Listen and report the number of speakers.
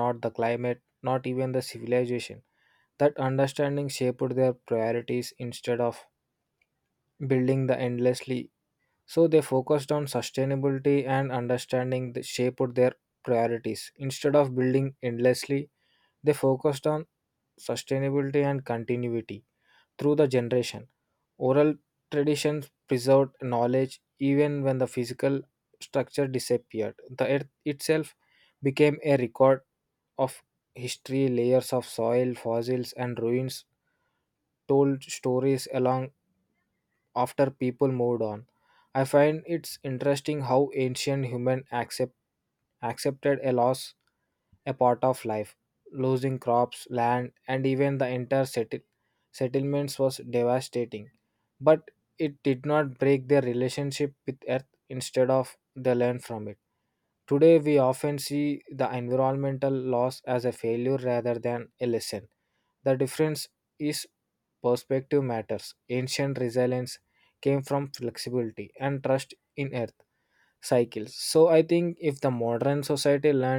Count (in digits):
1